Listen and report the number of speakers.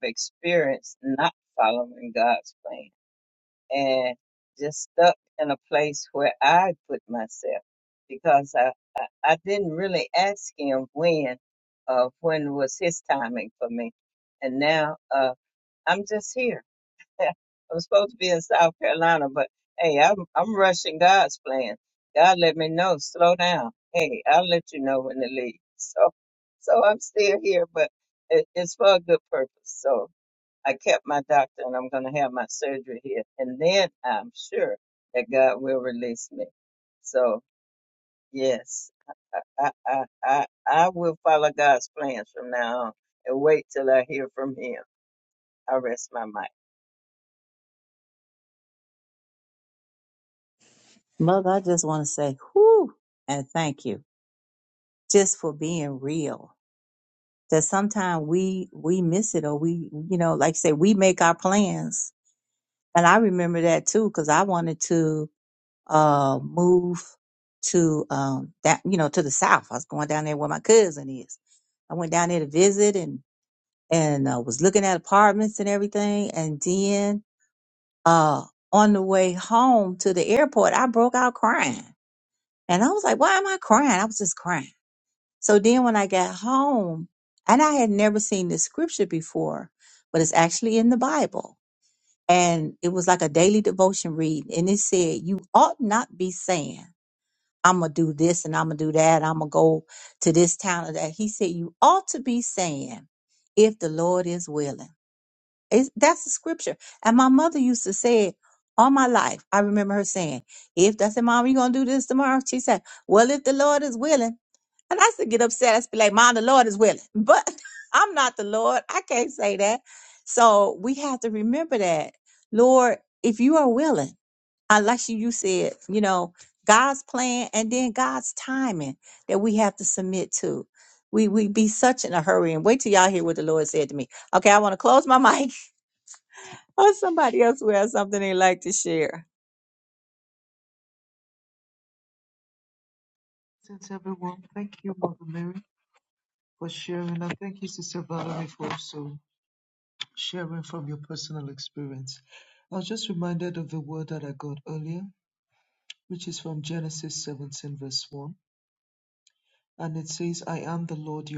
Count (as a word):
three